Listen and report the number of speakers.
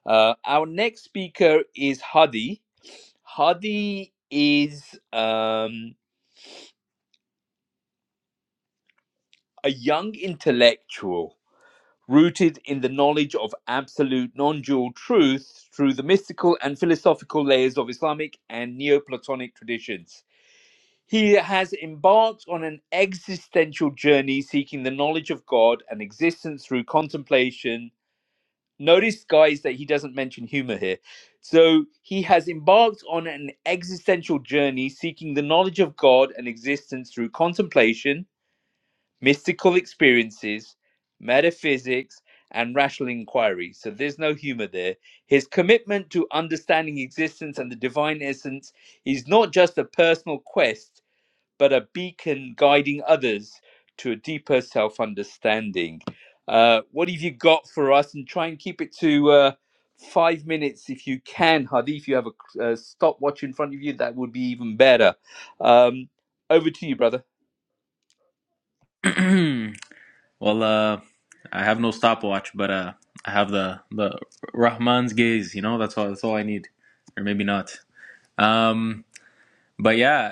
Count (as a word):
two